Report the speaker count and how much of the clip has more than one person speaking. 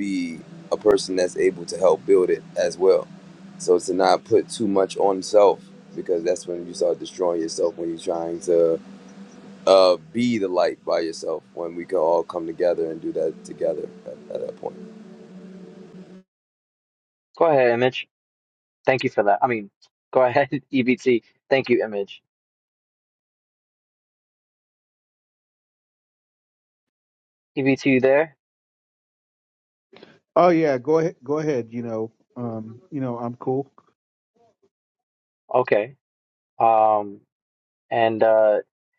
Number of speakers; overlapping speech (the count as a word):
three, no overlap